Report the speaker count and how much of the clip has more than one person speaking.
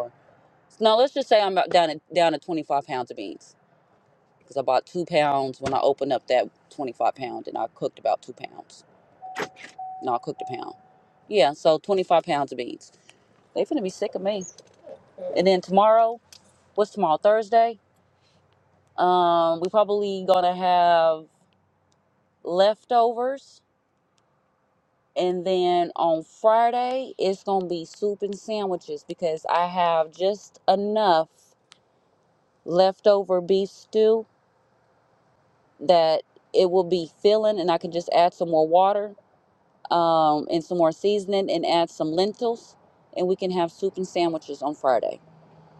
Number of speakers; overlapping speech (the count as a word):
one, no overlap